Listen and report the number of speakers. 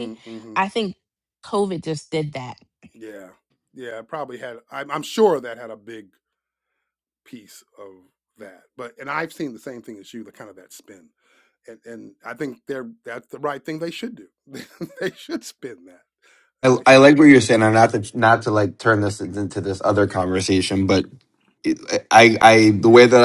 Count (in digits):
3